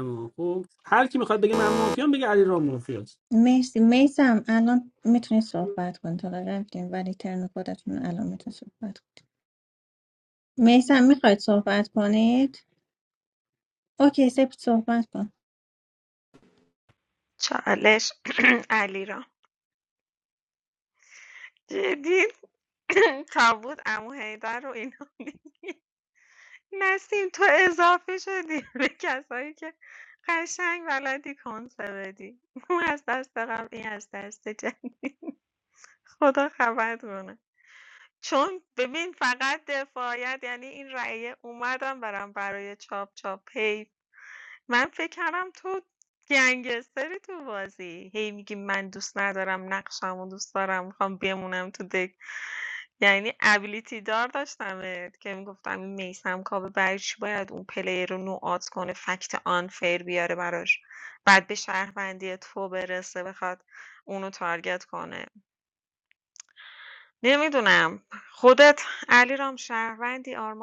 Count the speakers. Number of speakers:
3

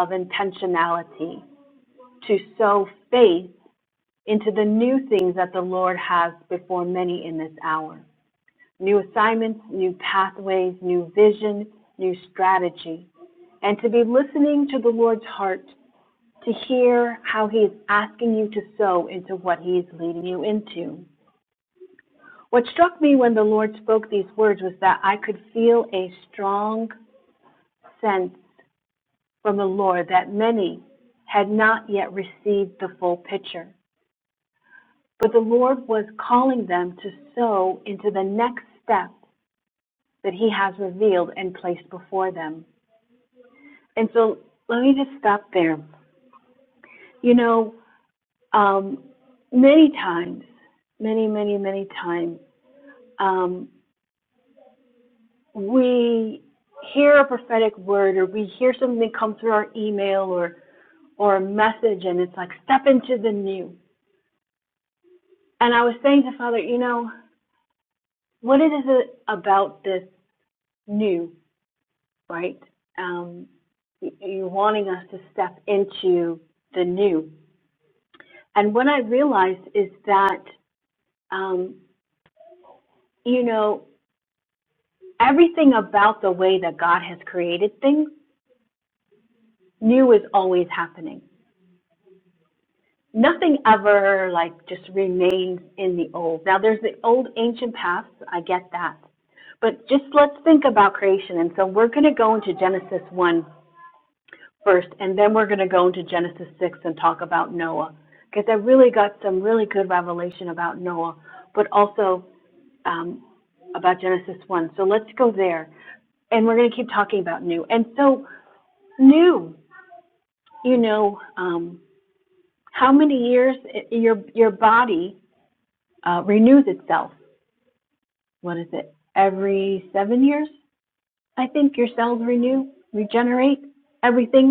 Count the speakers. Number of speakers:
1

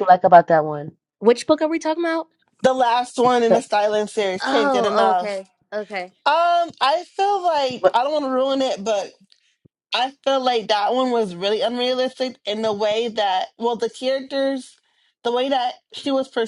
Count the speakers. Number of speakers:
3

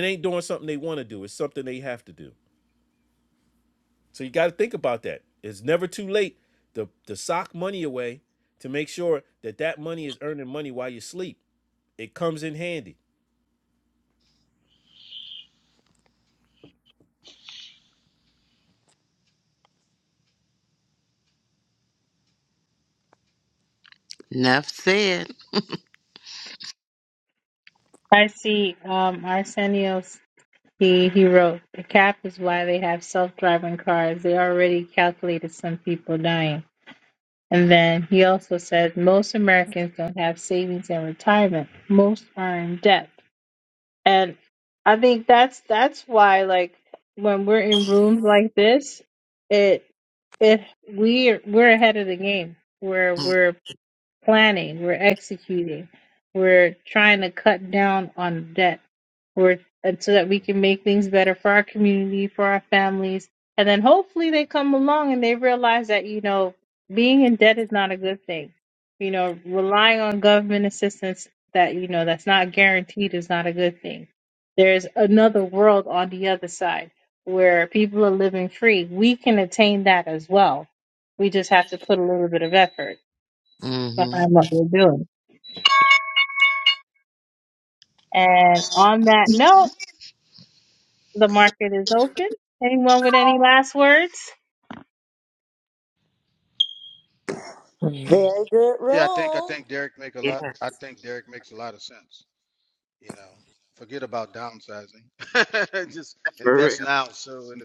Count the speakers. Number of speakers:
5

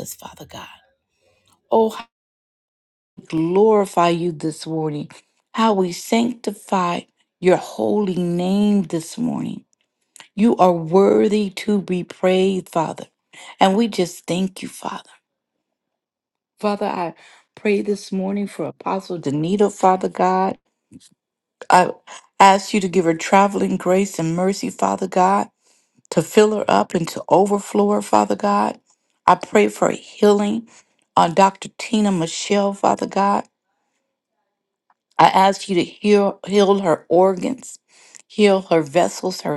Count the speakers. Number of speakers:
1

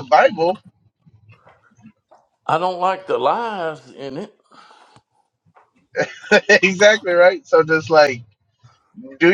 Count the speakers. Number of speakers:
2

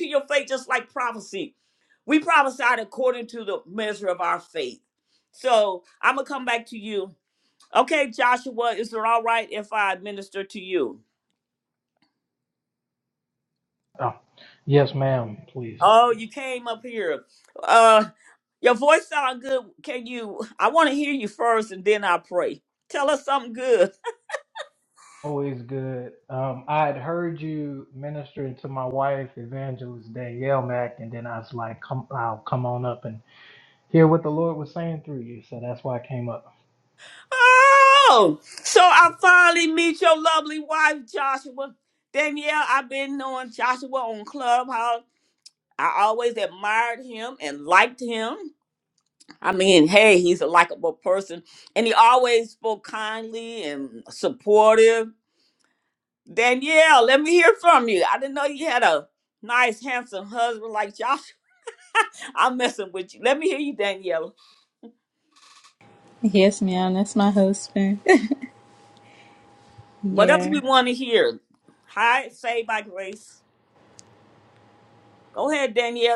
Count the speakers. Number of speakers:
3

